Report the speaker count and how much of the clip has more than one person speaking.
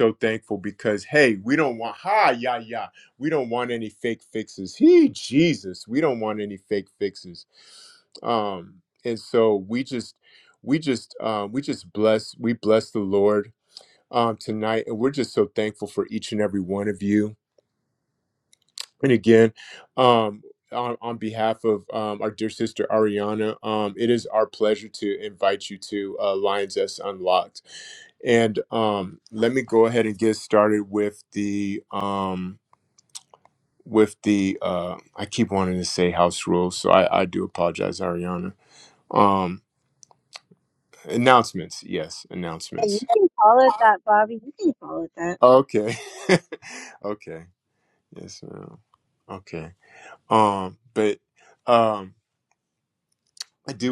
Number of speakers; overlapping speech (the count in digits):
2, about 1%